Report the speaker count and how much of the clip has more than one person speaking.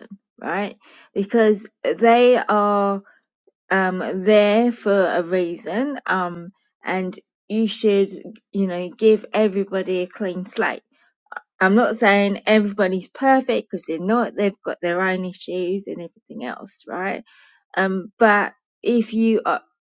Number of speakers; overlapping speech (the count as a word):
one, no overlap